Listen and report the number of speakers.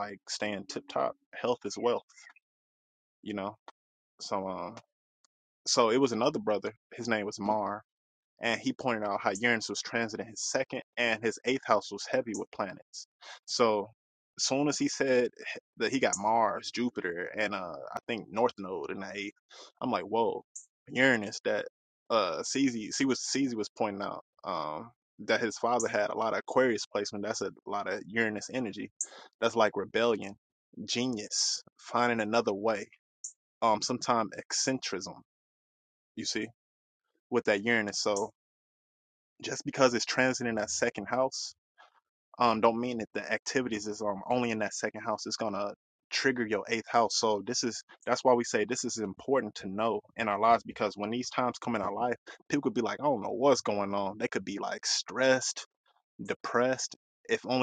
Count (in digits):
1